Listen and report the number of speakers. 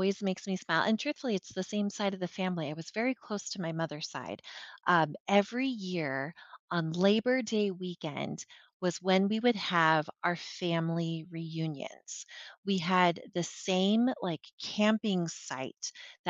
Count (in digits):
1